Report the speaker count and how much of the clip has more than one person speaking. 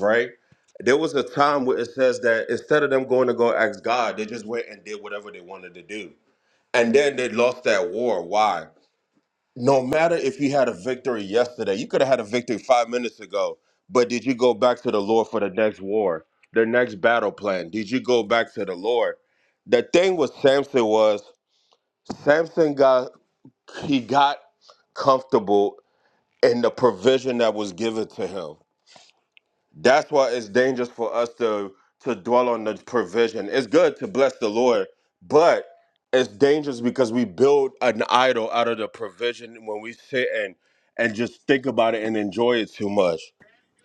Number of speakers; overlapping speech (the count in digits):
1, no overlap